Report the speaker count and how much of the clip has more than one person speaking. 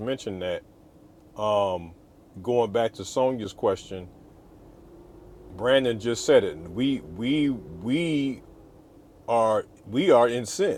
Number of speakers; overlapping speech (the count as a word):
one, no overlap